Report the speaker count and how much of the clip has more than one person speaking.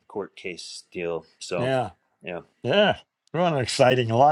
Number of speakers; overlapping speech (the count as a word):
two, about 3%